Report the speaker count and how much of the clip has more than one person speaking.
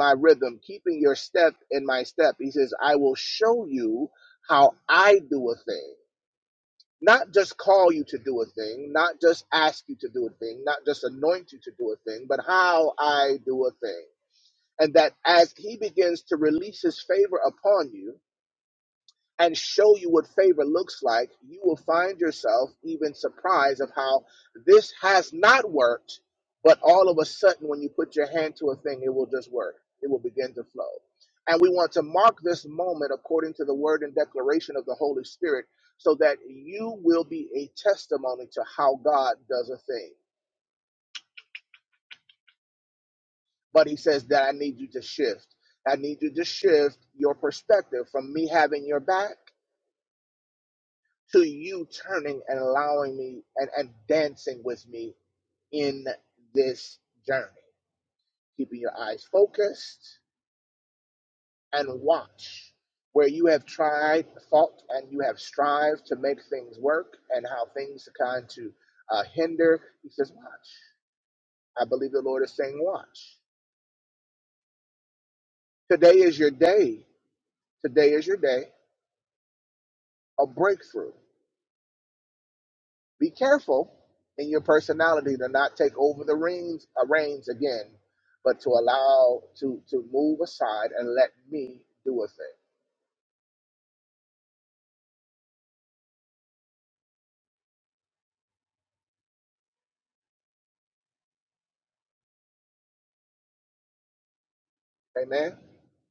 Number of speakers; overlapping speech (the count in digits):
1, no overlap